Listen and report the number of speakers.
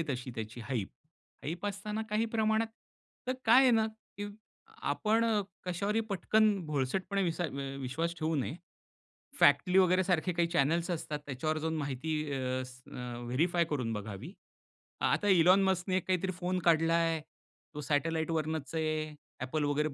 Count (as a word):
one